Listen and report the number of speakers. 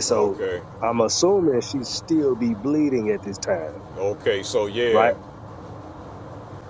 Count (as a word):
two